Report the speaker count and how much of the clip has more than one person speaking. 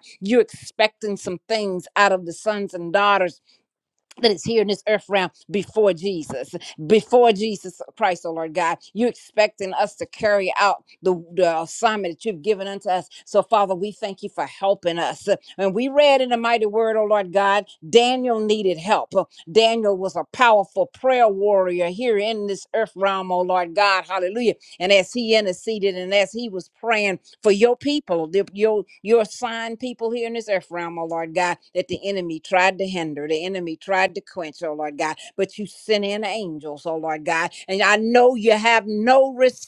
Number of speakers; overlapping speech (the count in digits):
1, no overlap